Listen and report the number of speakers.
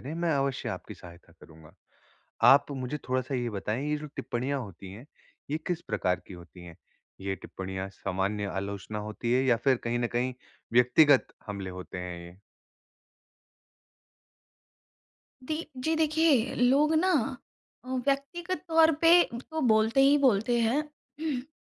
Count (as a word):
two